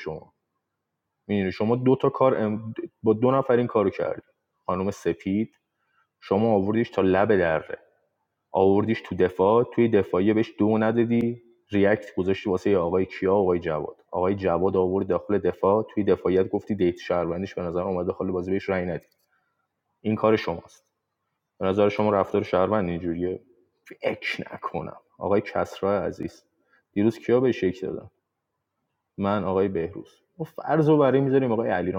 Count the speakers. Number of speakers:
1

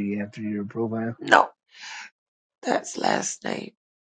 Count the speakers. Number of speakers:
2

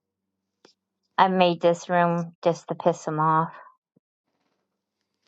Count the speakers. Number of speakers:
1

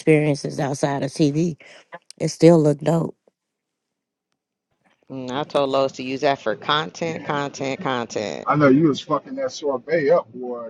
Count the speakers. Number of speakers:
3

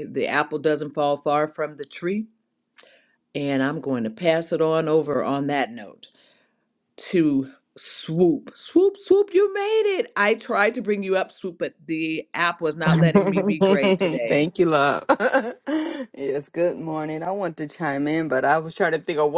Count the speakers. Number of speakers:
2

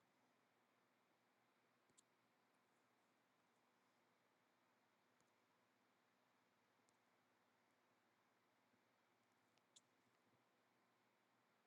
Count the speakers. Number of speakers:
0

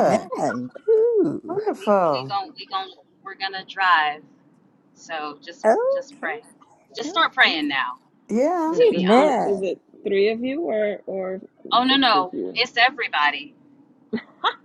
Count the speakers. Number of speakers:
4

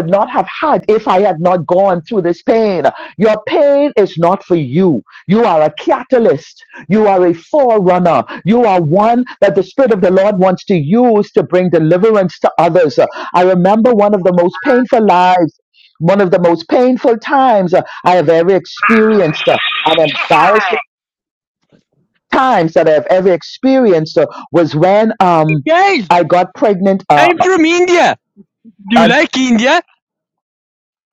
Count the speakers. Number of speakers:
2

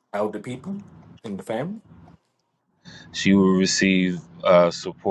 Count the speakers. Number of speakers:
2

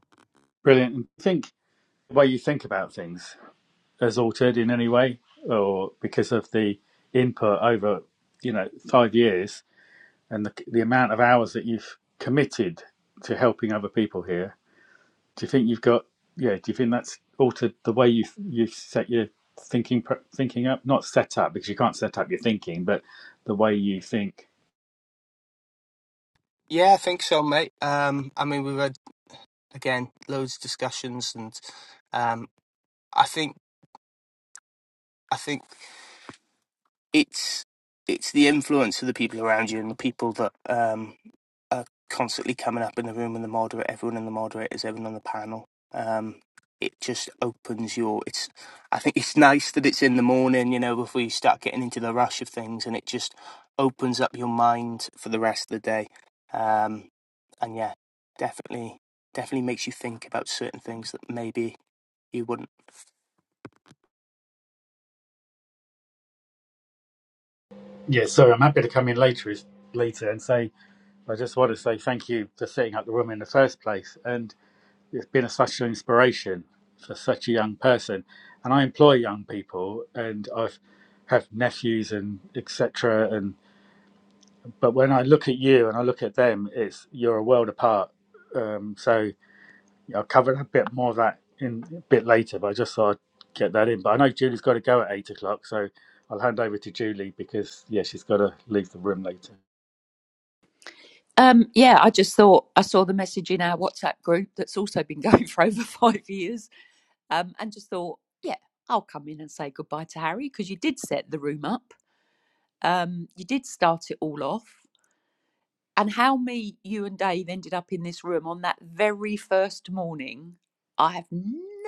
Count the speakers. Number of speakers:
3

